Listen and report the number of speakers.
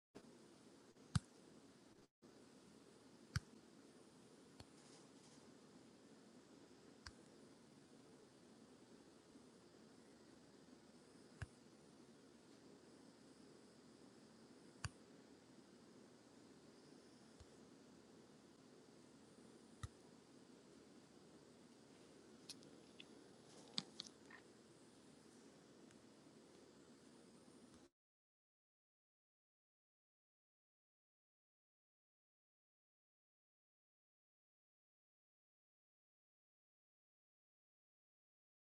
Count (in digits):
0